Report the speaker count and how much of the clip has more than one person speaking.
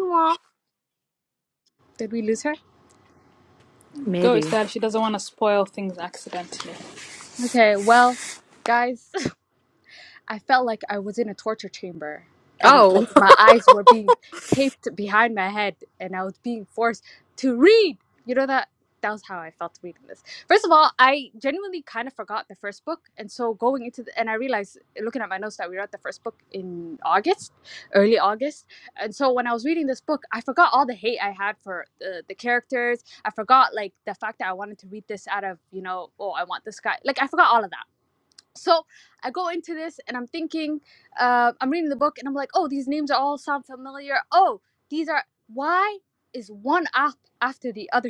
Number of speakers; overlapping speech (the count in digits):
3, about 2%